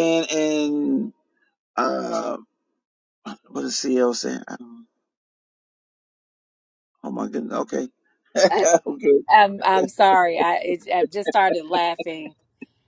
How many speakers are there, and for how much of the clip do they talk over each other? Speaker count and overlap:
2, no overlap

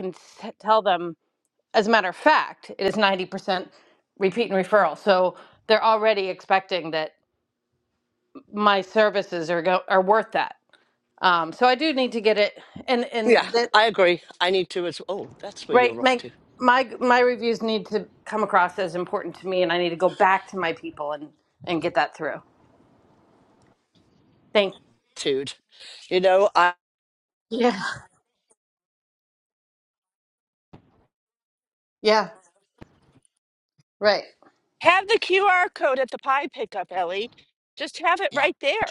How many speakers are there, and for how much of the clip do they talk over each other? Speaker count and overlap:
3, about 3%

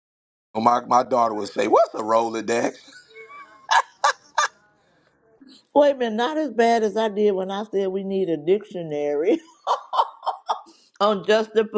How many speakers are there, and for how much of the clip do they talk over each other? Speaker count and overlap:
2, no overlap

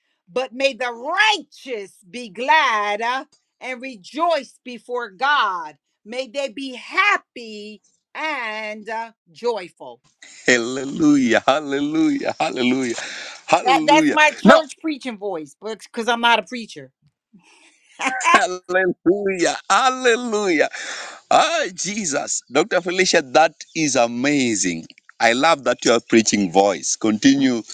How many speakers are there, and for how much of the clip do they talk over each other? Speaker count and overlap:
2, about 4%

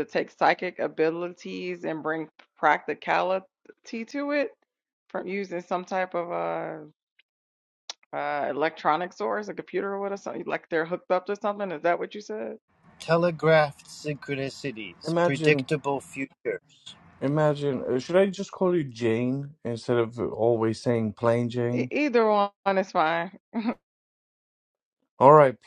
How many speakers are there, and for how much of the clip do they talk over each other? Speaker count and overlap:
3, about 2%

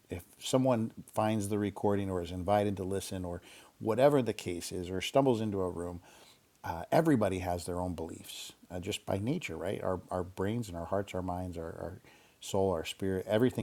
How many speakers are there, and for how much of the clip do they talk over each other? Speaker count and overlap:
1, no overlap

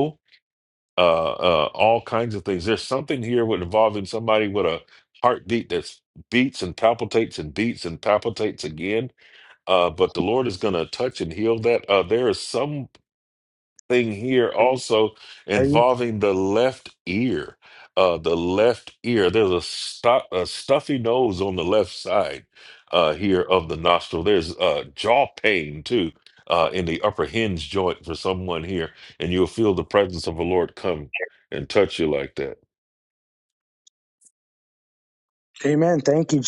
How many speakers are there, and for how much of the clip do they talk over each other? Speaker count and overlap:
2, about 1%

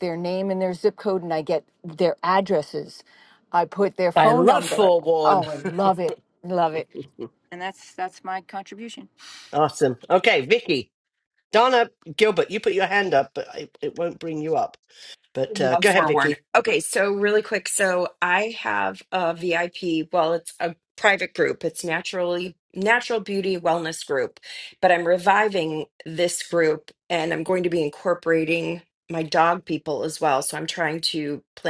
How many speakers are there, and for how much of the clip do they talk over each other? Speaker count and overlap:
3, about 6%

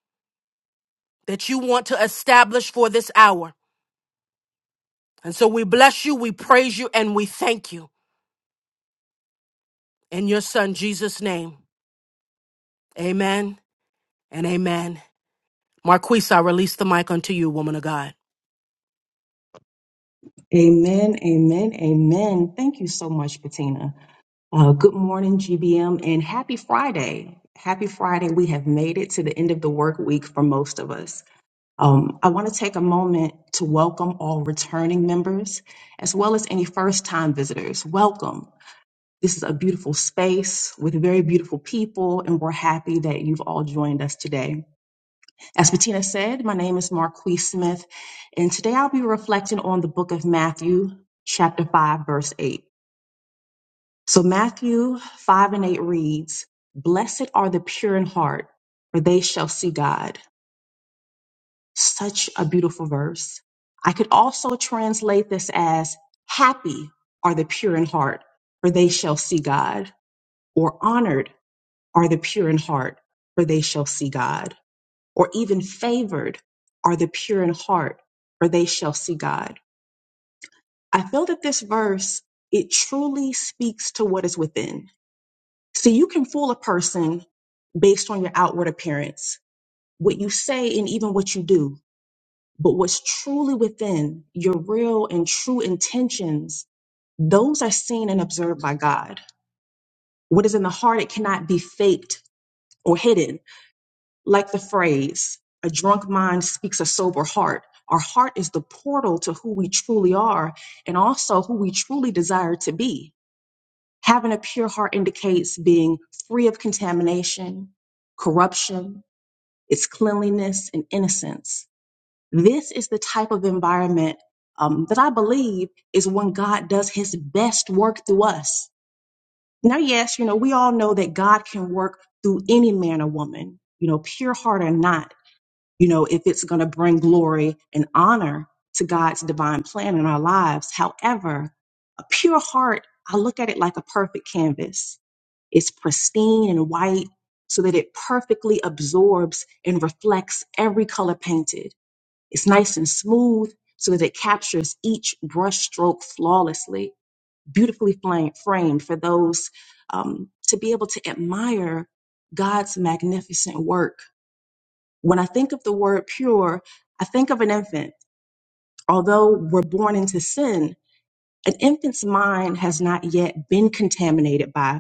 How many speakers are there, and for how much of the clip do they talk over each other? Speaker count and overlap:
2, no overlap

